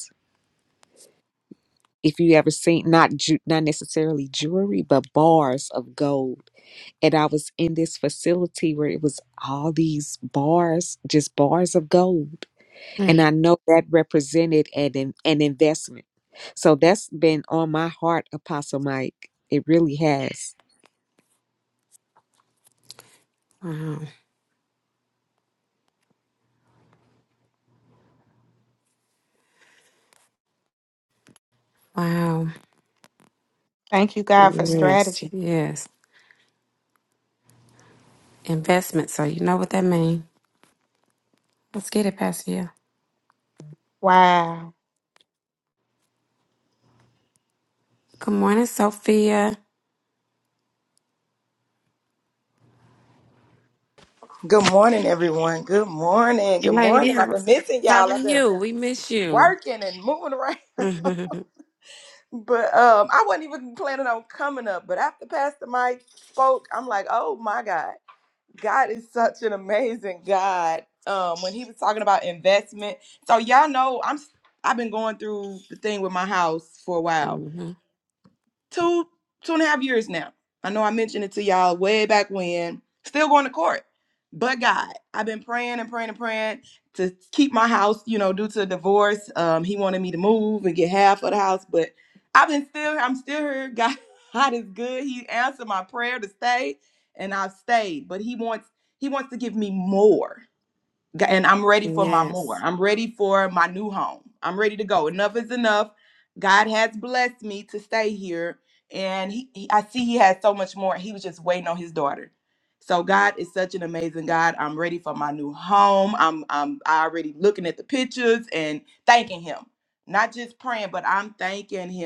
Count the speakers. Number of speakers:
4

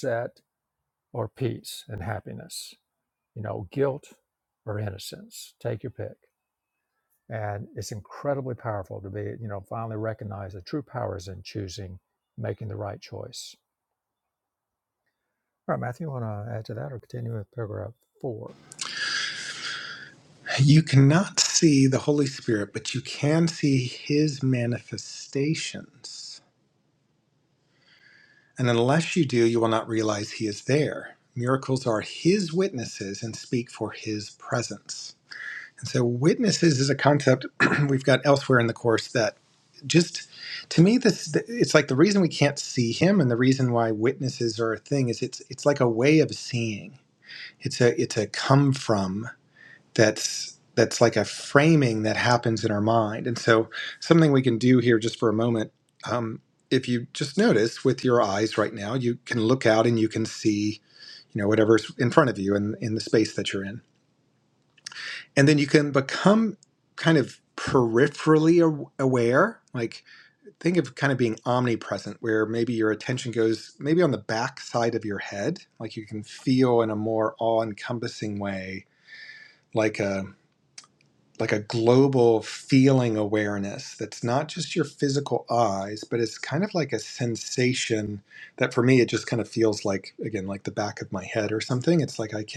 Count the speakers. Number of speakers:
2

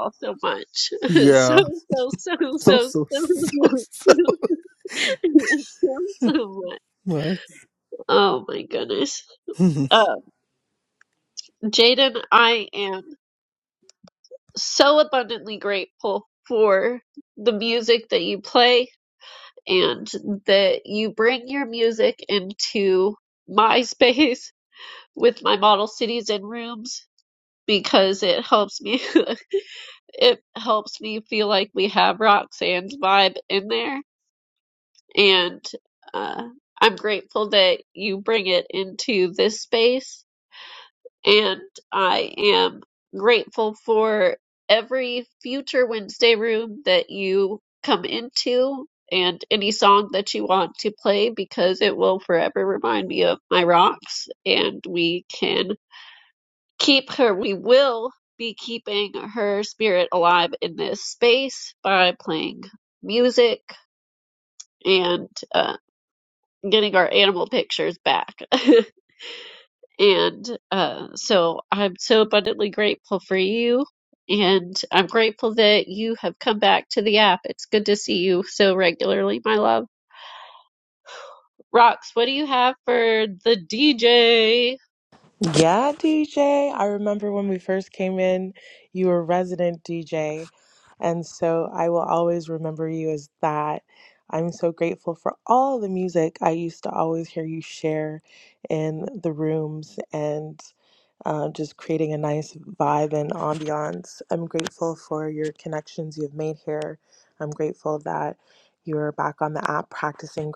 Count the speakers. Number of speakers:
3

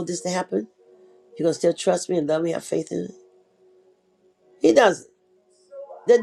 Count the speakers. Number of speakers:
1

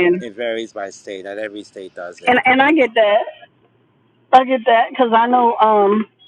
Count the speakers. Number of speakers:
2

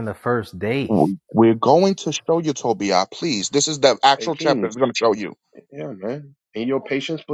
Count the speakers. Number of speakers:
3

